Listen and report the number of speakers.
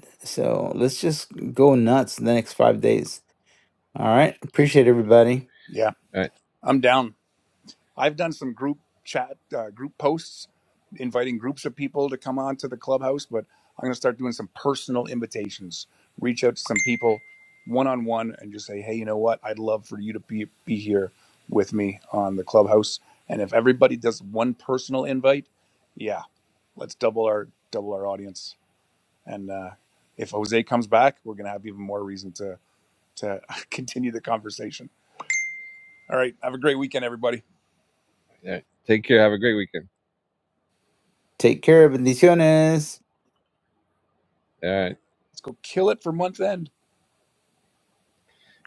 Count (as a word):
three